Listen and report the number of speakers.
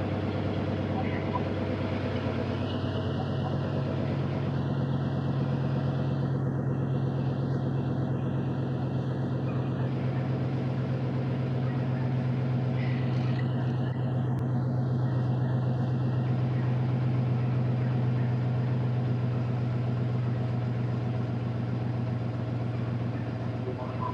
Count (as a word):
zero